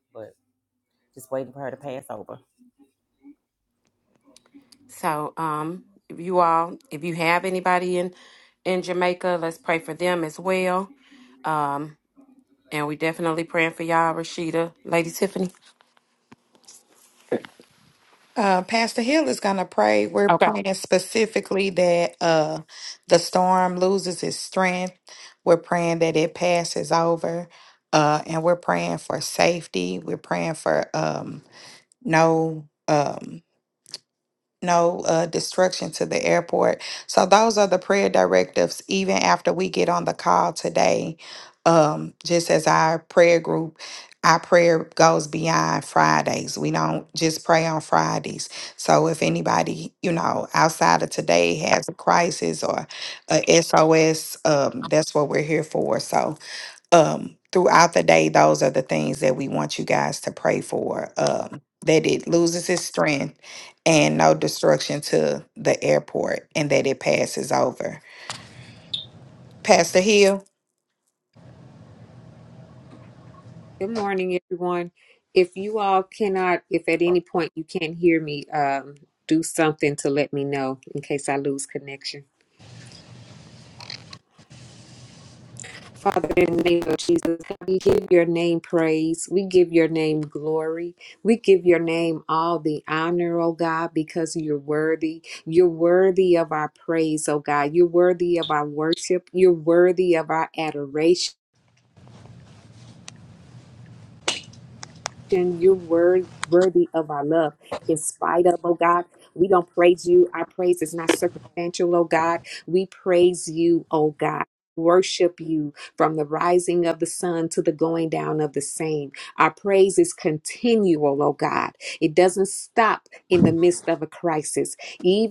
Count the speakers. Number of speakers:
4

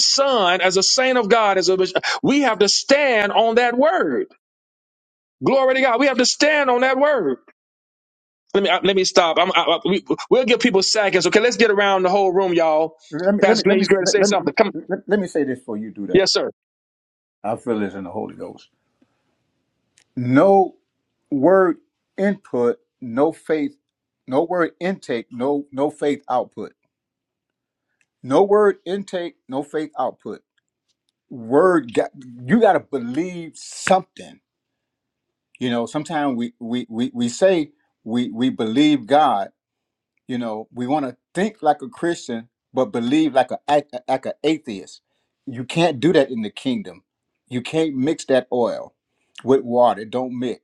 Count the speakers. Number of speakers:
2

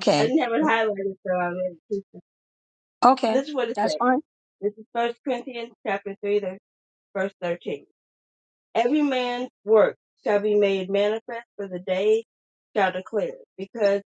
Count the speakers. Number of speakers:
2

